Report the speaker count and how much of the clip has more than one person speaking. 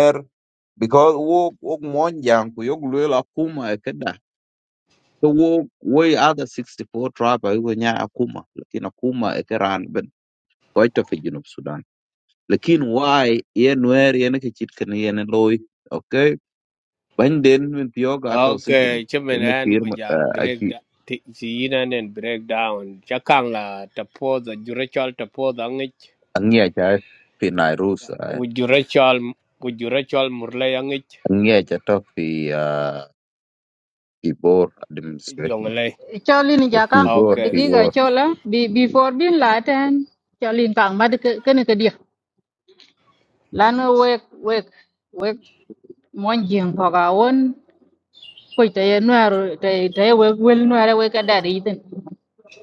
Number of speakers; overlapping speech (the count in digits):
3, about 5%